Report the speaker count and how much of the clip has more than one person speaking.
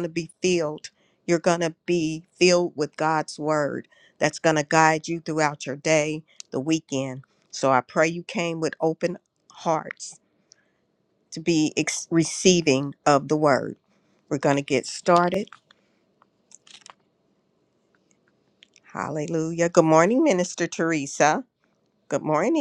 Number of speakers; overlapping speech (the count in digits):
1, no overlap